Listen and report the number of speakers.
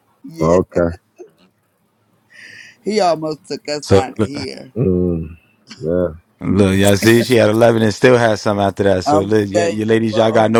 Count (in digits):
3